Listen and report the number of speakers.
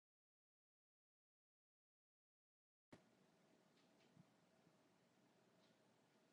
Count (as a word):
zero